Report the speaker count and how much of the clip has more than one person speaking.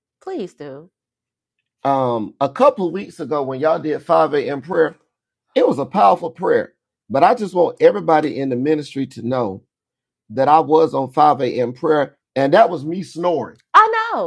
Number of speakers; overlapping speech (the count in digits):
2, no overlap